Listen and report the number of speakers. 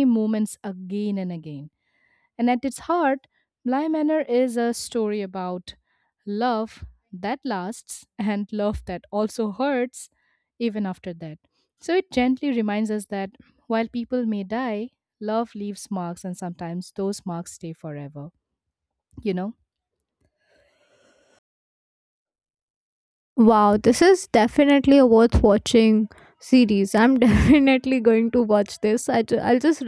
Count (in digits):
2